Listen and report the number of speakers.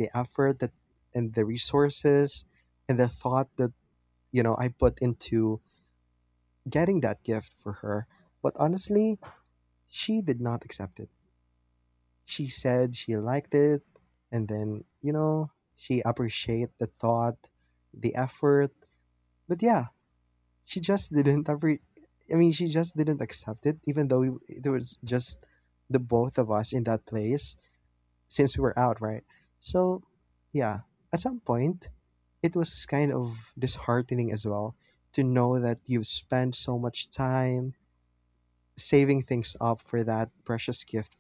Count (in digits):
1